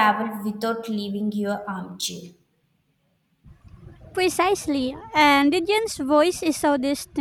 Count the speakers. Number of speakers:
2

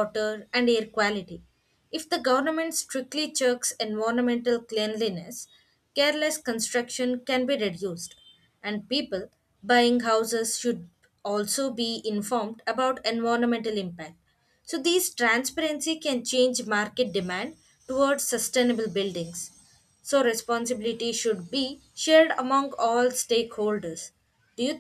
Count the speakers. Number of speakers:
1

